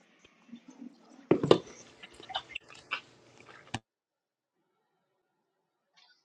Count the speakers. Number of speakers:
0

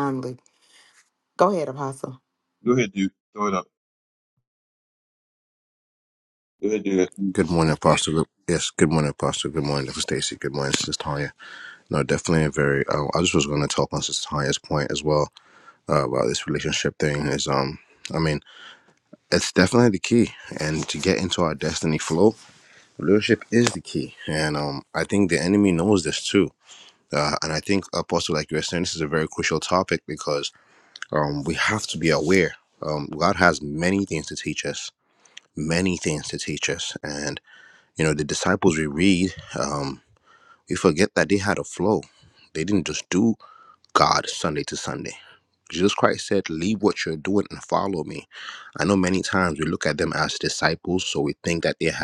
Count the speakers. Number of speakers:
3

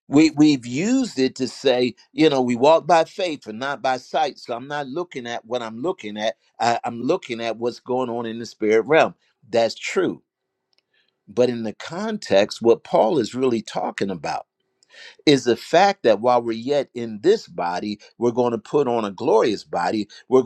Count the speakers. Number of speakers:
1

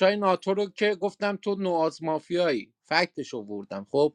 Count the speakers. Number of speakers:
1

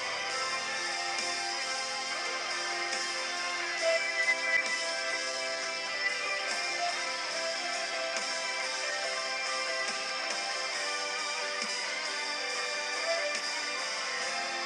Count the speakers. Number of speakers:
0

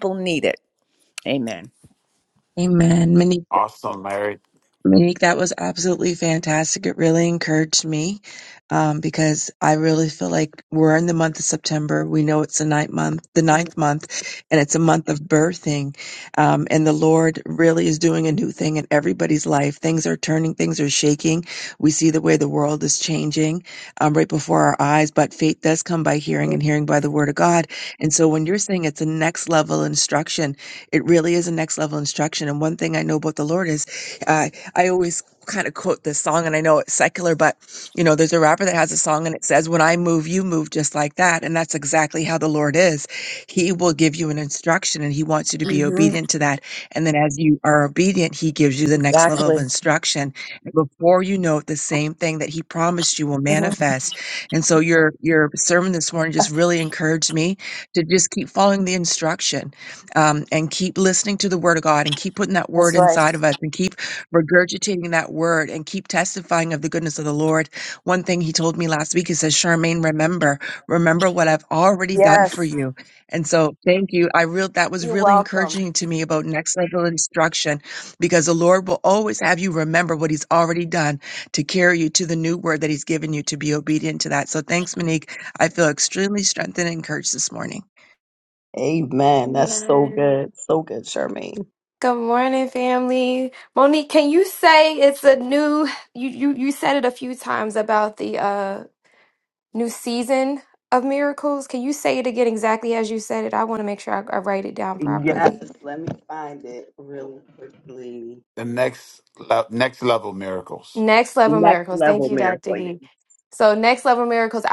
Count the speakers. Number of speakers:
5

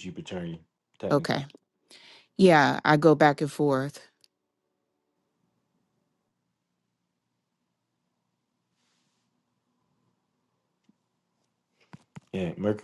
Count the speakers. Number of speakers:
2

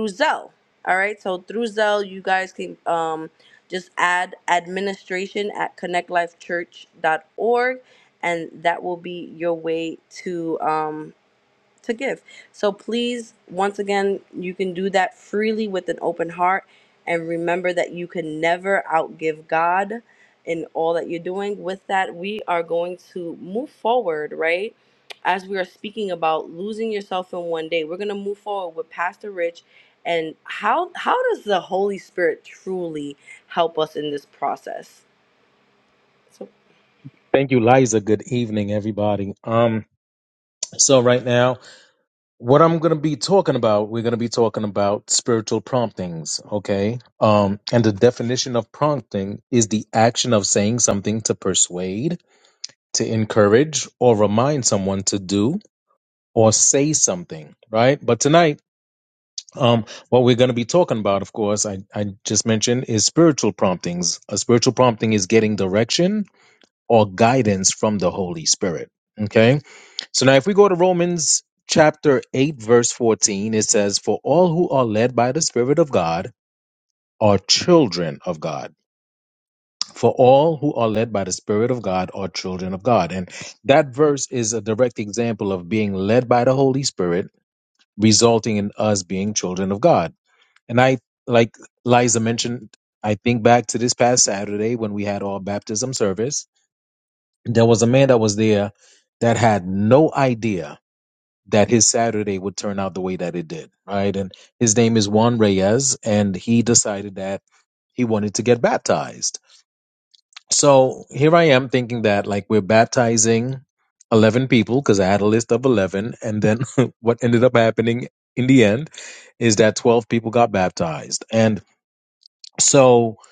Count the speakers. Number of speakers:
2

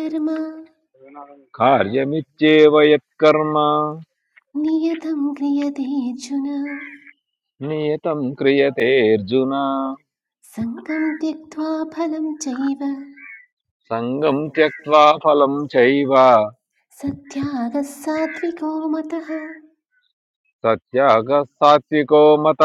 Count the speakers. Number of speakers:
2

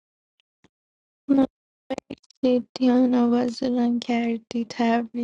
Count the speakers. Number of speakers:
1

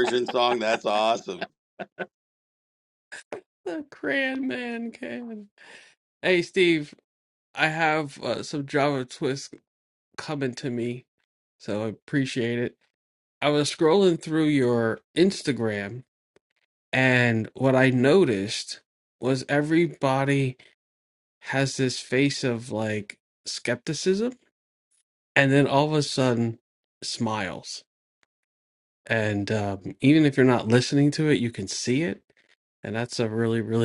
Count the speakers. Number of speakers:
2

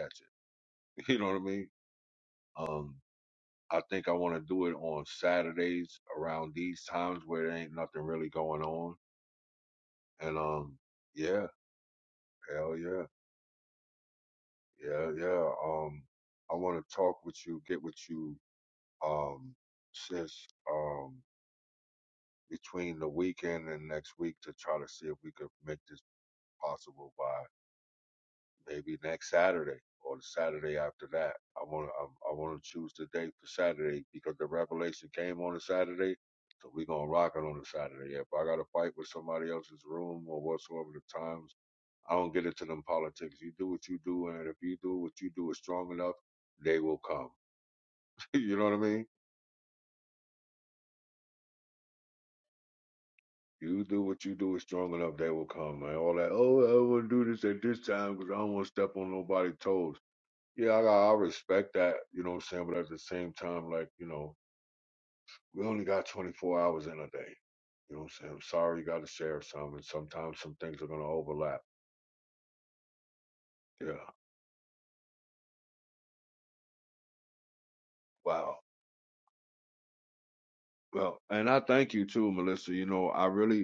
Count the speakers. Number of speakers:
1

